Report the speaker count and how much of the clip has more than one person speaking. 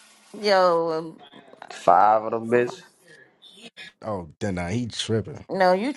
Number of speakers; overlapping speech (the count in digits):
3, no overlap